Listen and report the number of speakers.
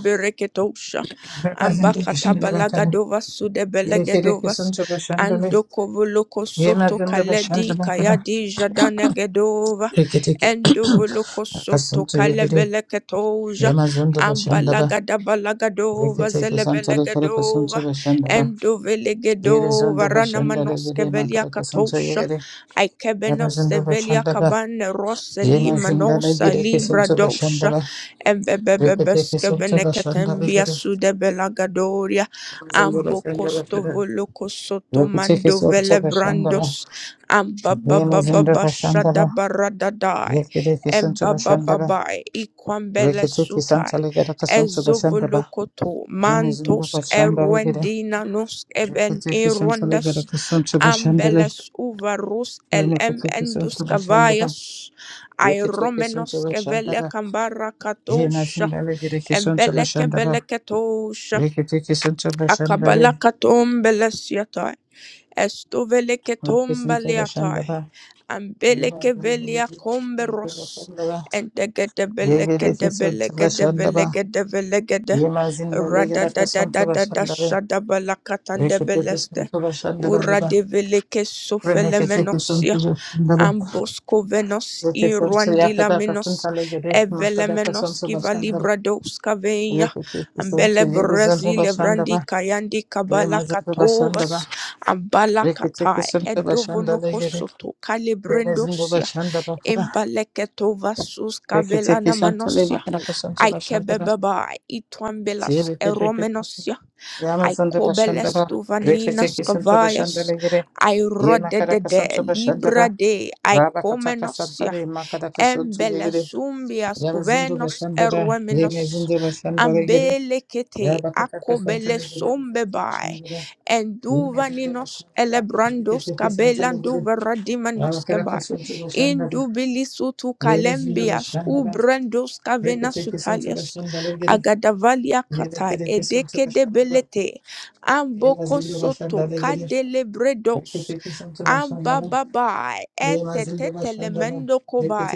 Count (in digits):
2